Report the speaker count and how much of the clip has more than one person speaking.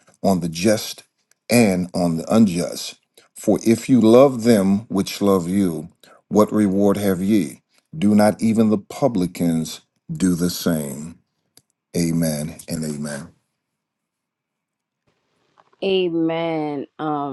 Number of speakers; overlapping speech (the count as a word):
two, no overlap